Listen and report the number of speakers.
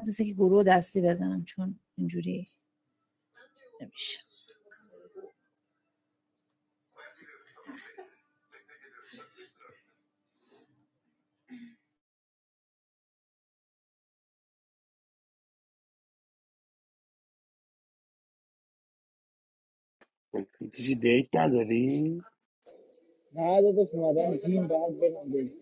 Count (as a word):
three